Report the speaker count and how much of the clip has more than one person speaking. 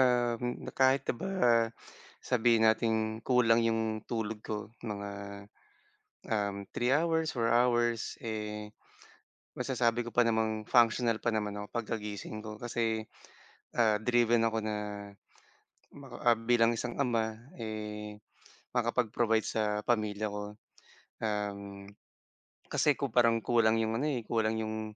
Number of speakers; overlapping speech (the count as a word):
one, no overlap